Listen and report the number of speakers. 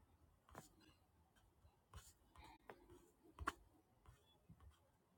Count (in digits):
0